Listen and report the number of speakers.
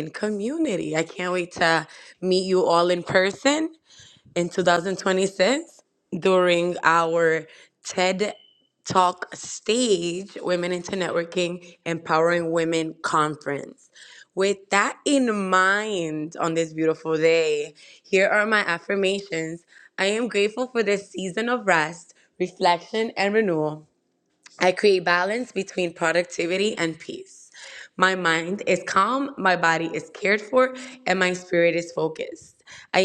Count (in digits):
1